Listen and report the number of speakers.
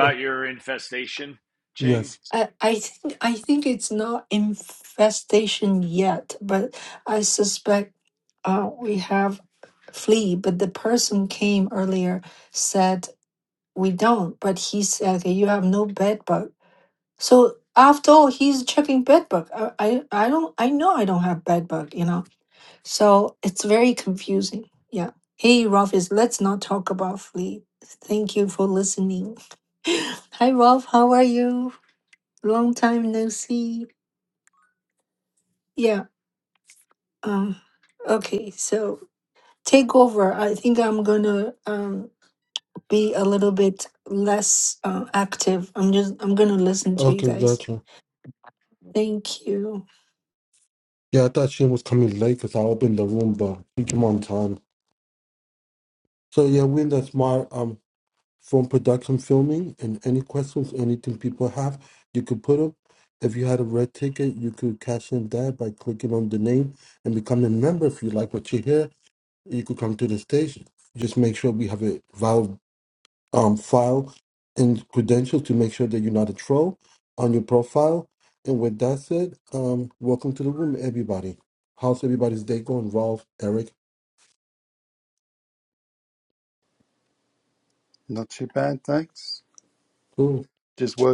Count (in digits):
4